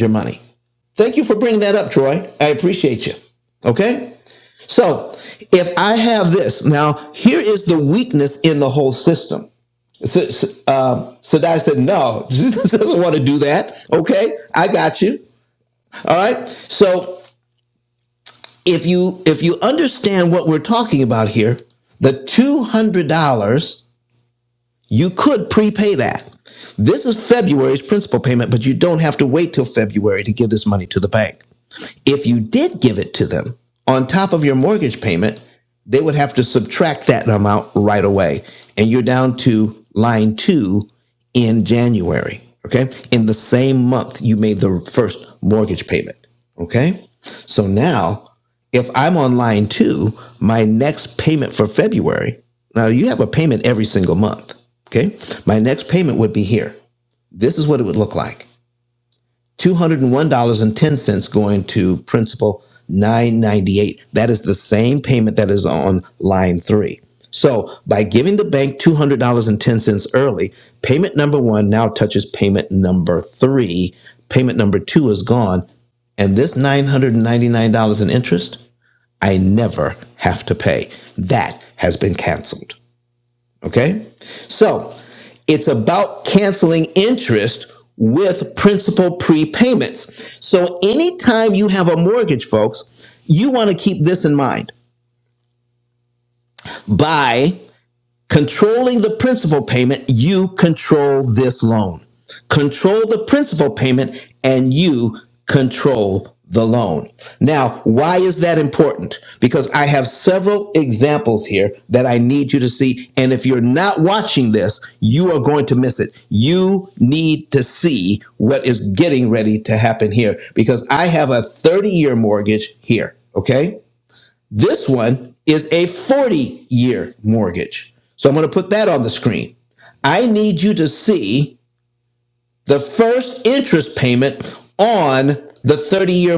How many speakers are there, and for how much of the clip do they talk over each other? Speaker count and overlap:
one, no overlap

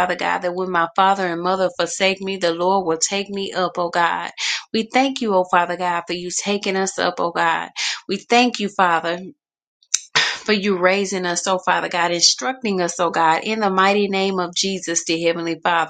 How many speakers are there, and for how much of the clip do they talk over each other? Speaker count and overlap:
one, no overlap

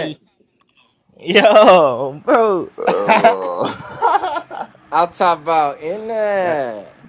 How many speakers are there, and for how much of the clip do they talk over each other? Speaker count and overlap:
three, about 5%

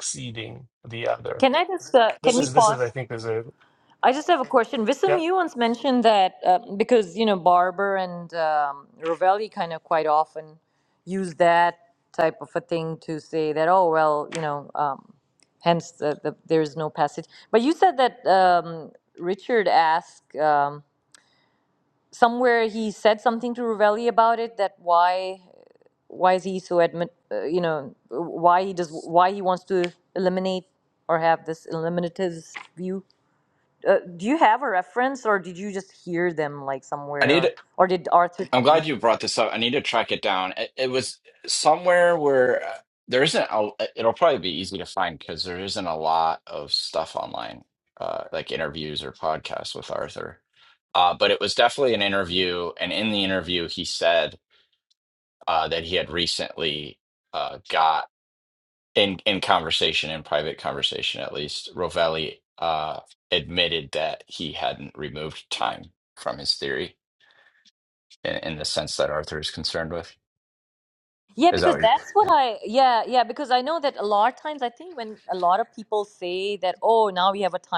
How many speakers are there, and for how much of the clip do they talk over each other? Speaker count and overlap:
three, about 3%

